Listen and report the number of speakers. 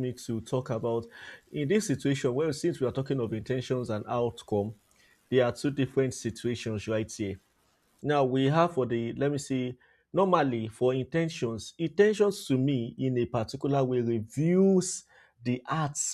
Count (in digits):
1